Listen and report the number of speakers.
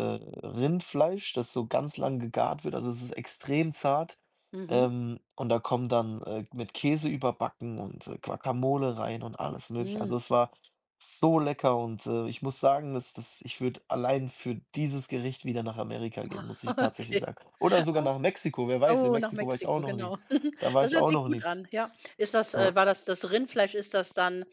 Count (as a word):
two